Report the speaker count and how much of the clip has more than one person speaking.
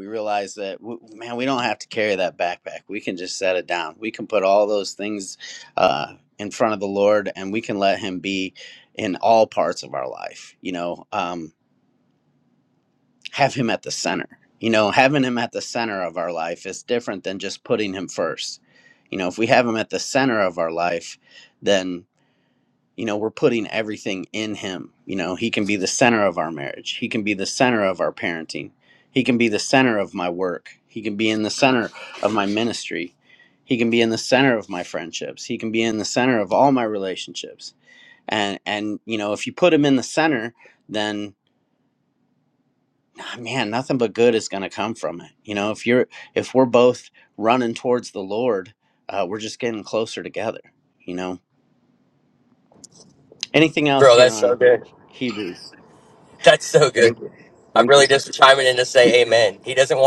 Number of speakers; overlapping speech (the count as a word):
two, about 1%